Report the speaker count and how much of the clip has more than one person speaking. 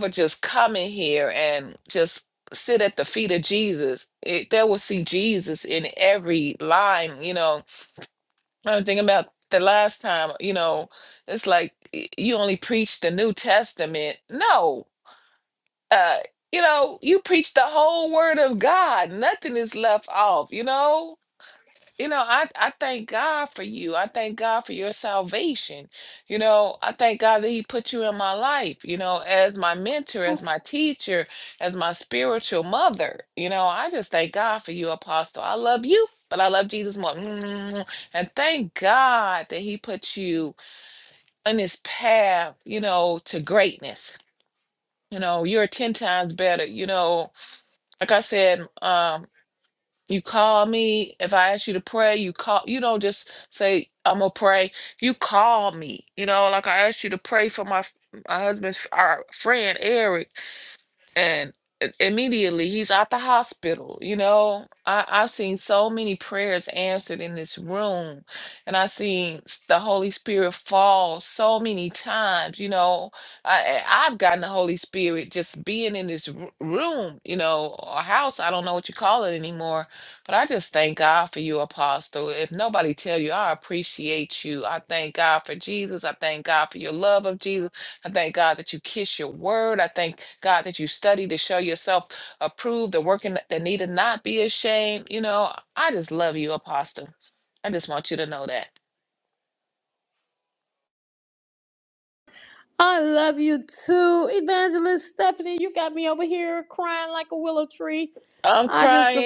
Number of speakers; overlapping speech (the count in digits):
2, about 1%